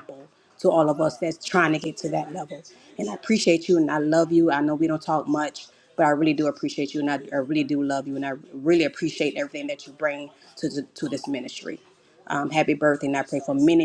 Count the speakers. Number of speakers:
1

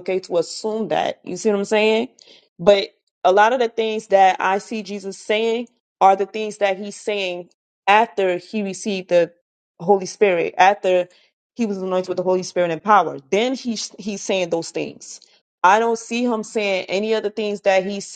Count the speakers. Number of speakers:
1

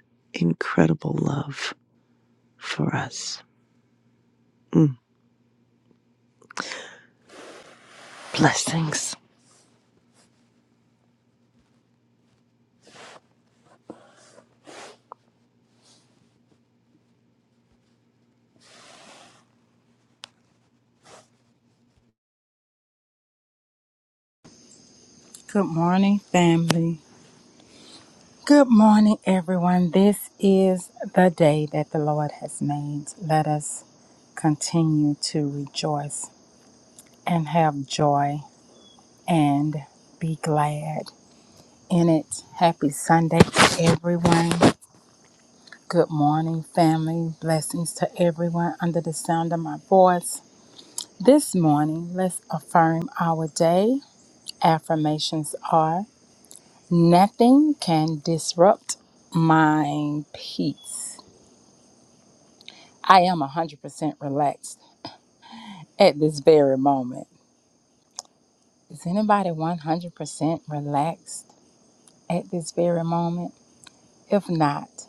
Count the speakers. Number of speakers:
2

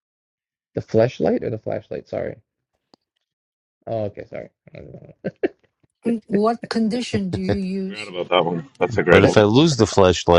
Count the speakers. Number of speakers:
4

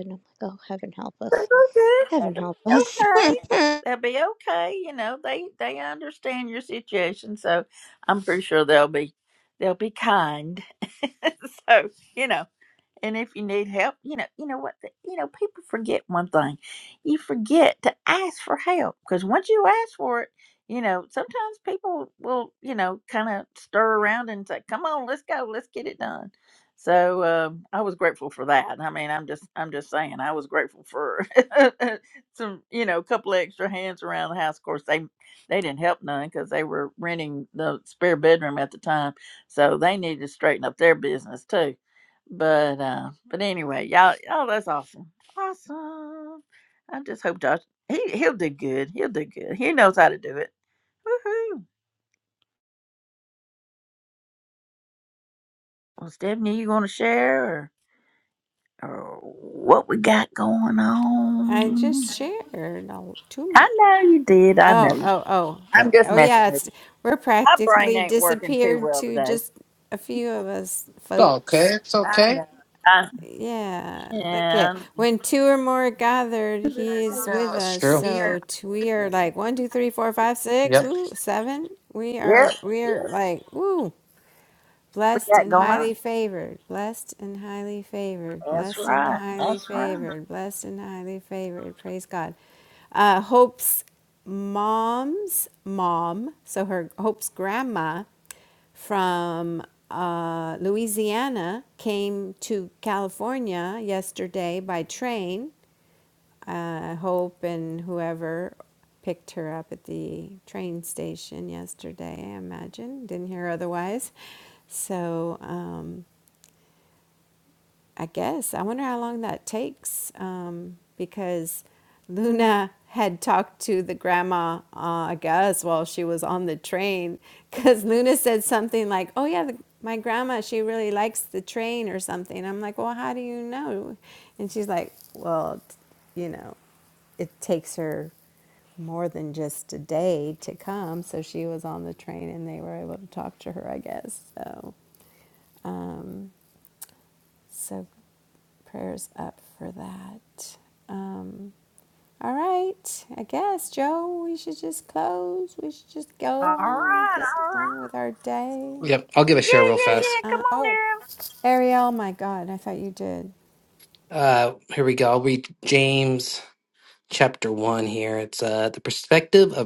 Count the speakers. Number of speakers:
4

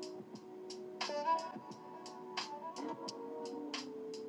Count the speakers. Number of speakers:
0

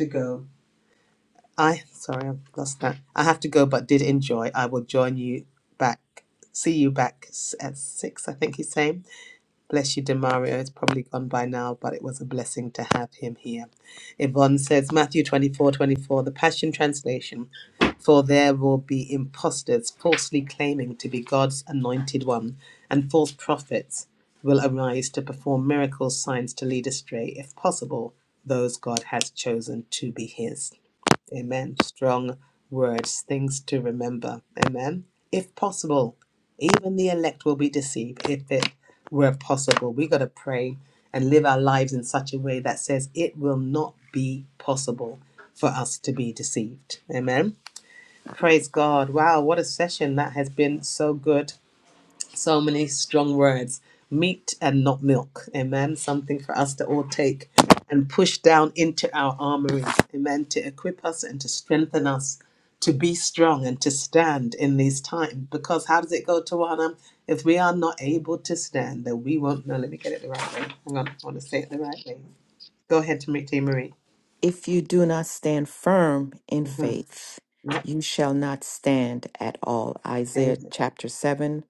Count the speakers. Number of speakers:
2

